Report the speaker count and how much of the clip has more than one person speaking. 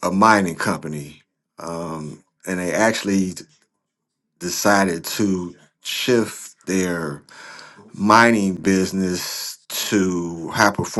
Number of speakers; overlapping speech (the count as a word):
one, no overlap